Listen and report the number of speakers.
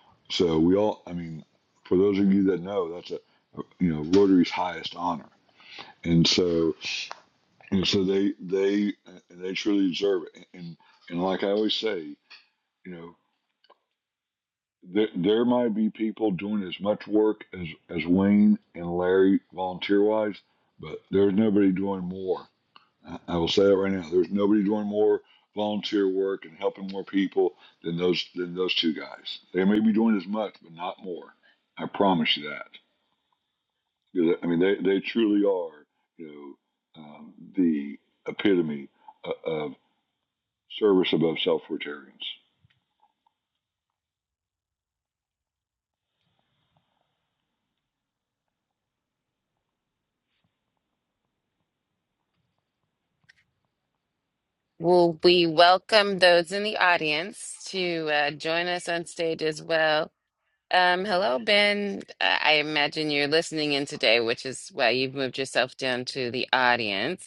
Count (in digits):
2